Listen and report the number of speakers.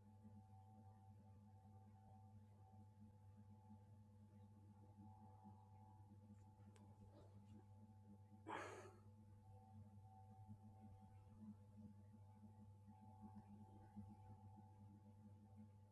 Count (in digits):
0